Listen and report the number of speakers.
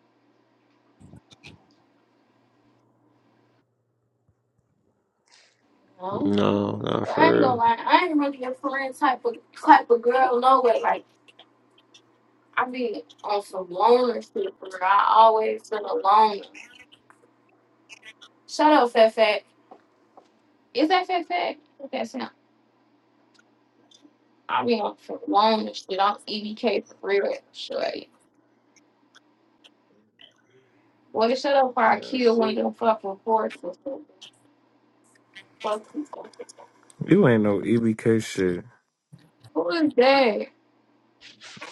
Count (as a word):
three